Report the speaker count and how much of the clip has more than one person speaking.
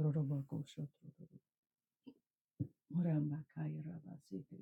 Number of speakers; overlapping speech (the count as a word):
one, no overlap